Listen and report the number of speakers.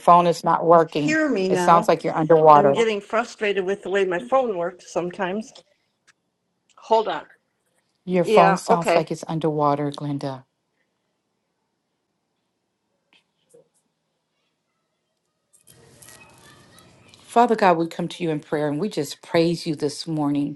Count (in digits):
2